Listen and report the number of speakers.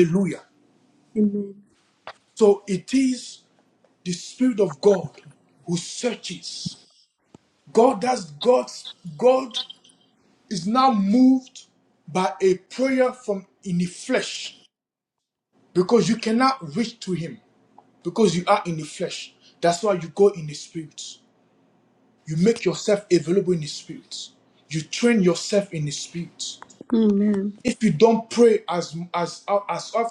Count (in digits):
2